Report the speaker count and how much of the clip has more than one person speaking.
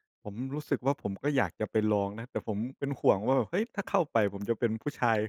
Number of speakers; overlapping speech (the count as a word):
one, no overlap